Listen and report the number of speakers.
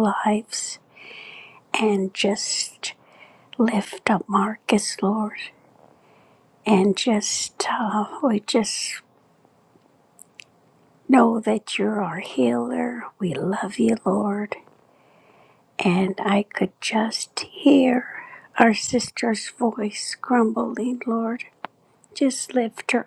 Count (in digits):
1